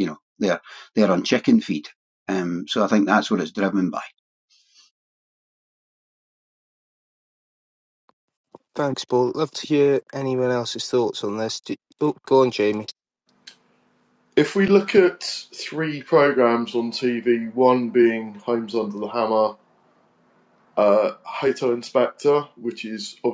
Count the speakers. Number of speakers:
3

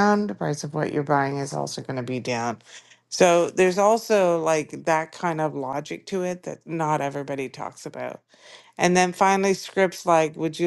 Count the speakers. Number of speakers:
1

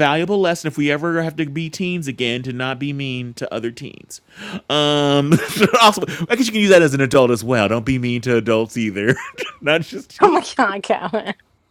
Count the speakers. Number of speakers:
2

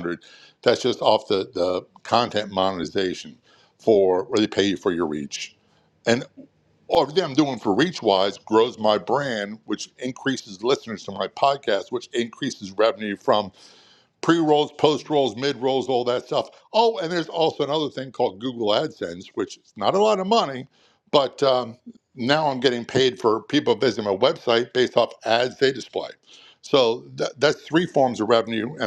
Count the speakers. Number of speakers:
1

